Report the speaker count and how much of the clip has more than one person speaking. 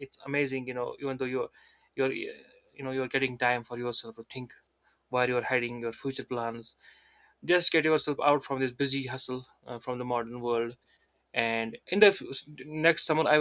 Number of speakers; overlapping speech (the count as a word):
one, no overlap